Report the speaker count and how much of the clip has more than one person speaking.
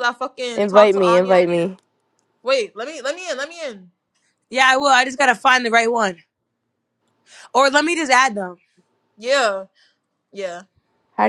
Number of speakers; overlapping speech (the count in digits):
3, about 7%